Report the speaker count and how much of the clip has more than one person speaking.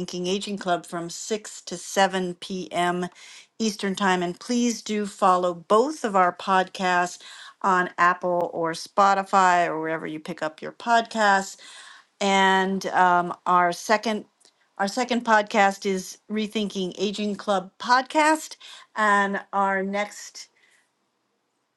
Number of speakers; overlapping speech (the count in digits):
1, no overlap